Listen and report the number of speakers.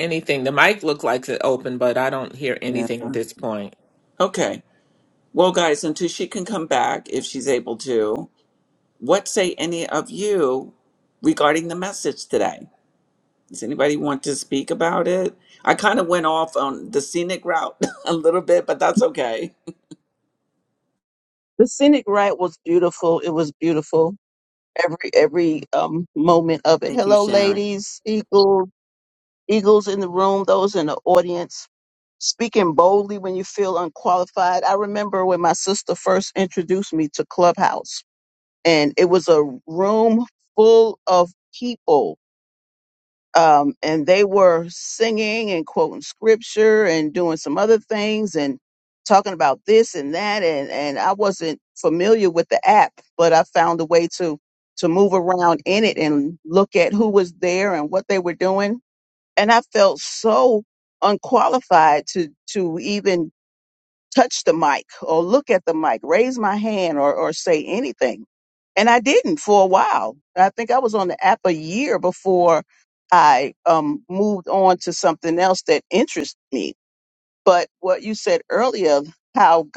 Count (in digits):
3